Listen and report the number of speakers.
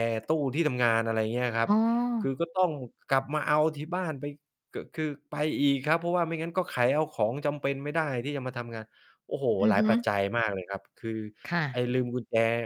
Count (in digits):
2